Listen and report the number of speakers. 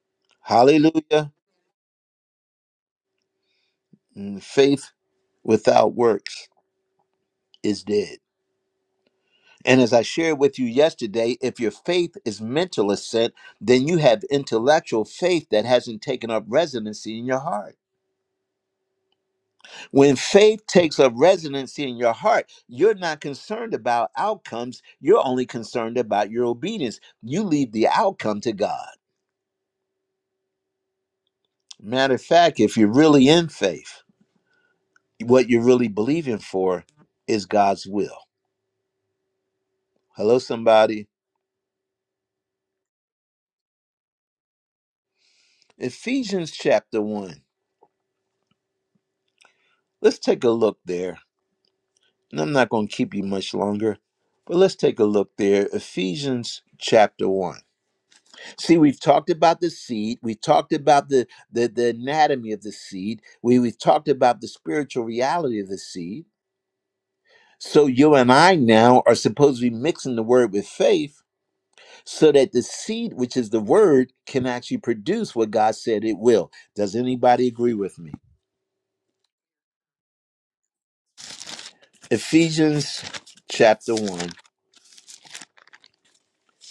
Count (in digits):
1